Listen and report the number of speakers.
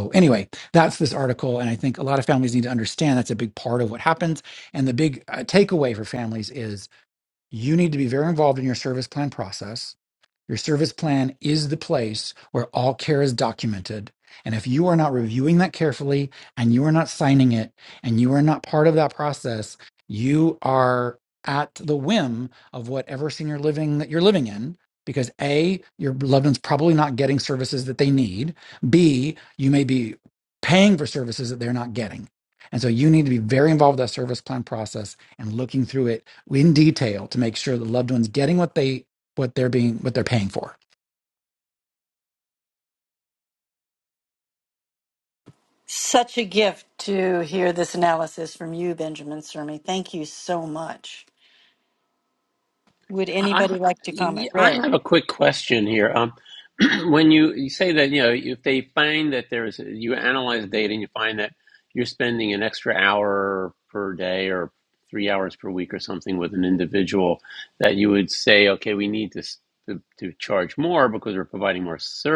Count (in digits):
3